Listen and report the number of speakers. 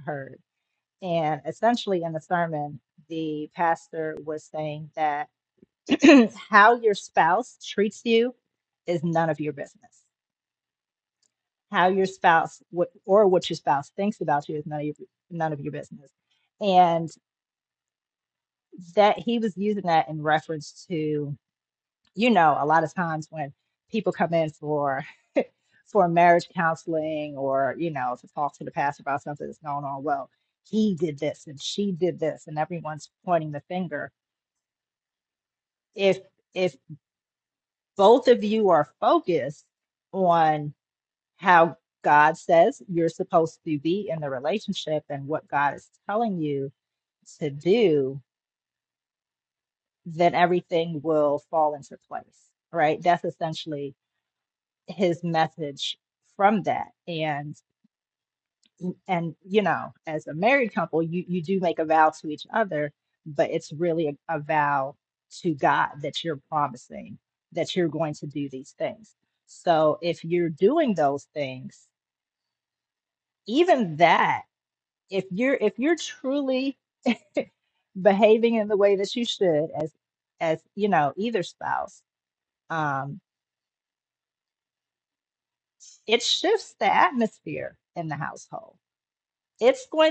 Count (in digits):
1